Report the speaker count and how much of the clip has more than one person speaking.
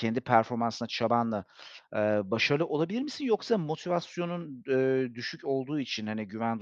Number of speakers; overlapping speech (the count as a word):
one, no overlap